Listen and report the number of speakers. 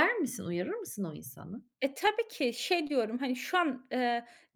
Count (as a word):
two